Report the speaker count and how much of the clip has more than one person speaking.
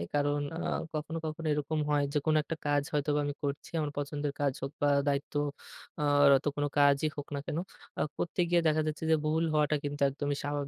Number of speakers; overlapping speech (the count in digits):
1, no overlap